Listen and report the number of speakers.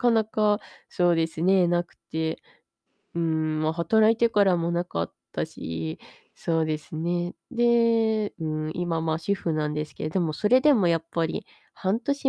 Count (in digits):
1